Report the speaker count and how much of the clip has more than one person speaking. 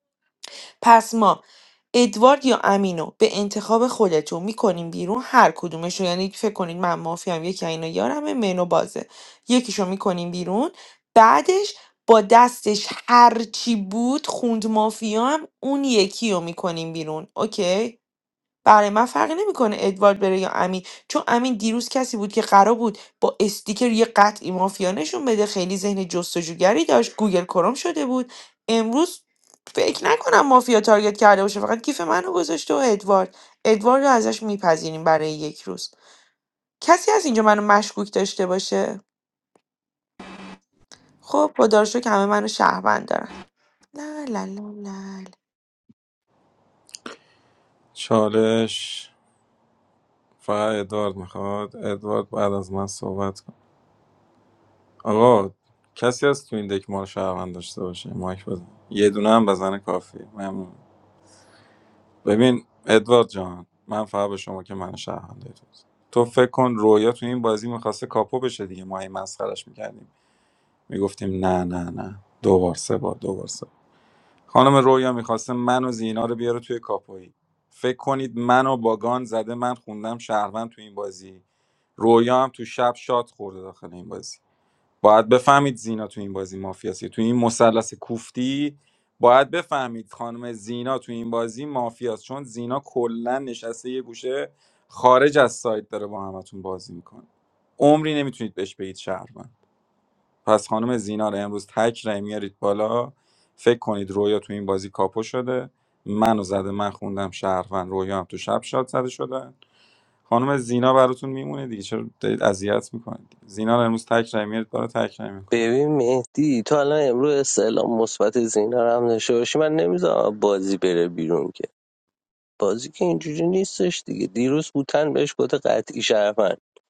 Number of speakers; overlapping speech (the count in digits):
3, under 1%